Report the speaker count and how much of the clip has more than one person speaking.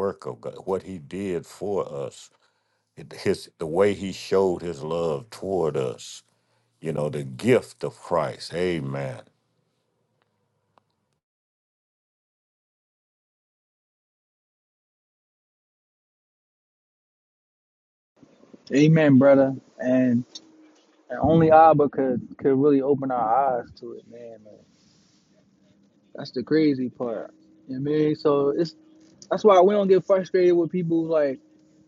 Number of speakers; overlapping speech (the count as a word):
two, no overlap